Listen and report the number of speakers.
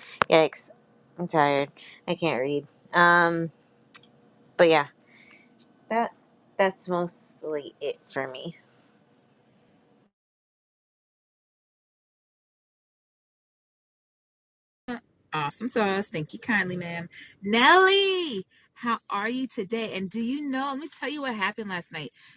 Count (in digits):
2